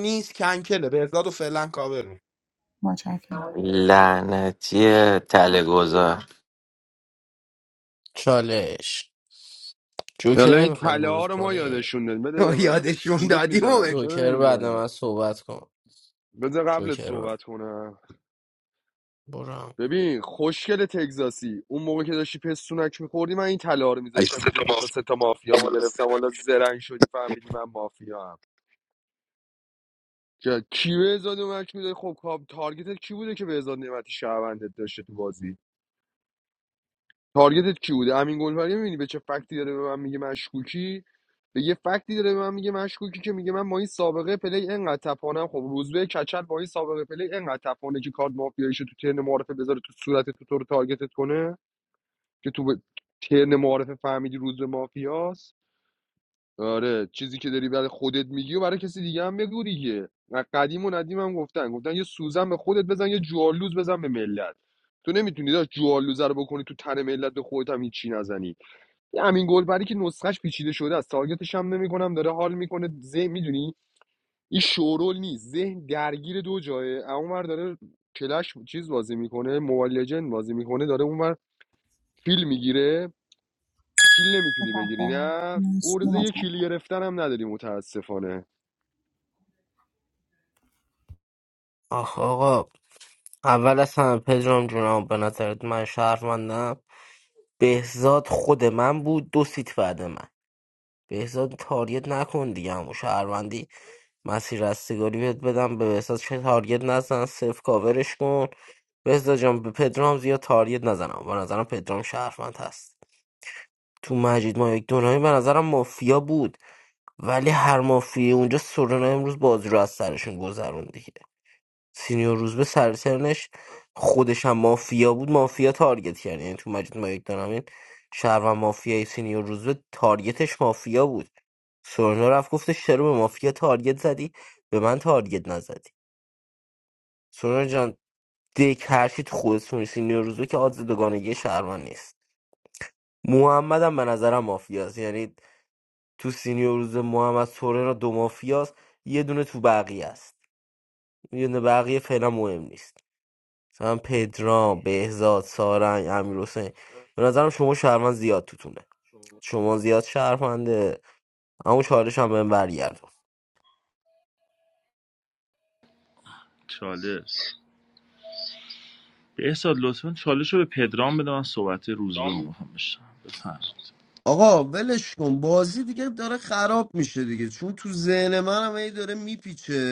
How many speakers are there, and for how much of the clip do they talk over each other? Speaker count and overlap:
7, about 3%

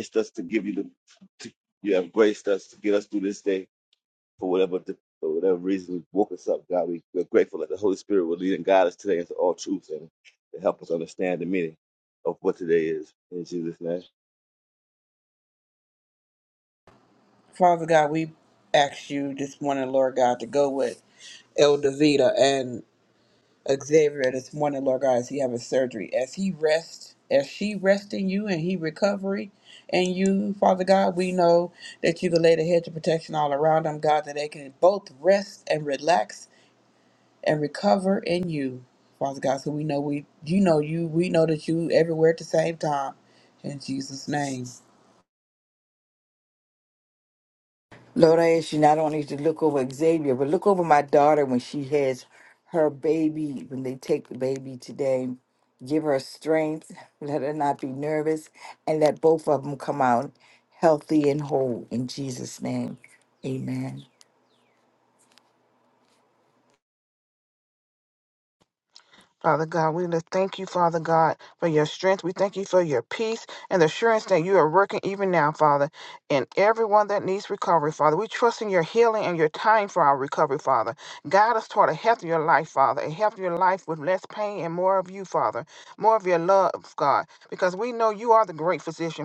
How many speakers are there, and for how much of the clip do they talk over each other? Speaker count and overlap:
4, no overlap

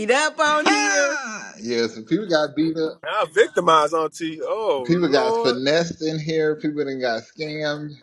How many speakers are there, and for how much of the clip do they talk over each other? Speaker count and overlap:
3, about 18%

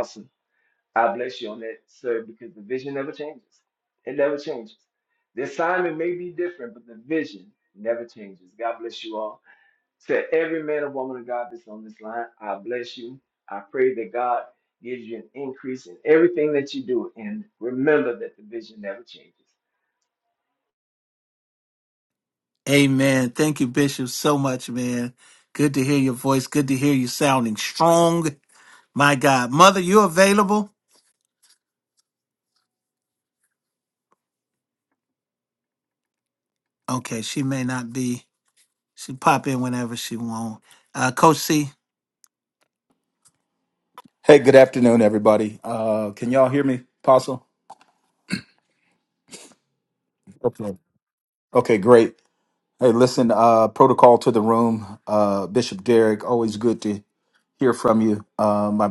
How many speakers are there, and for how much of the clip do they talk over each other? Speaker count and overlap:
3, no overlap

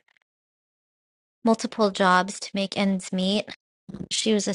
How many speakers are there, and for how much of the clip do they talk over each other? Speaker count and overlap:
1, no overlap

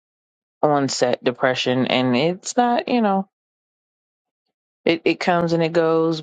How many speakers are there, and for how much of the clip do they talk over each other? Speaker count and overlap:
1, no overlap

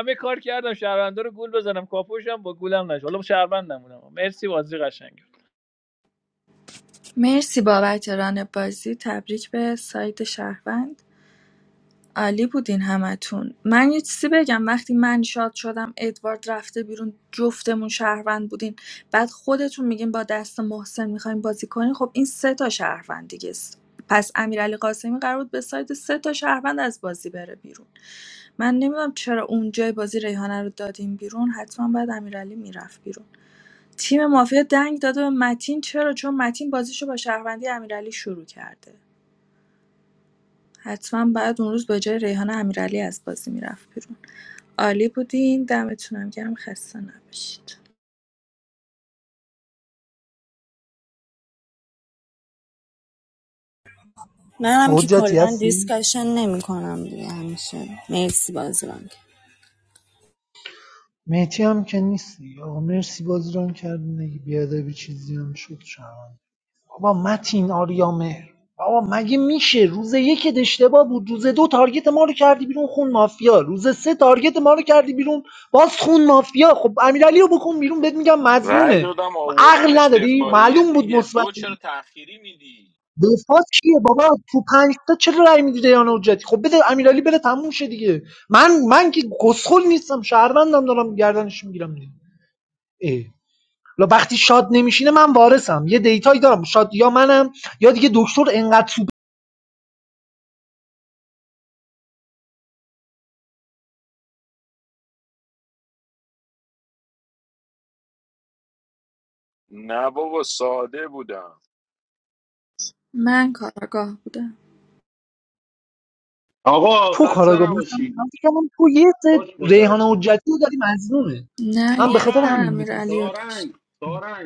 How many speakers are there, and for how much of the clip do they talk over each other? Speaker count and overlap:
6, about 5%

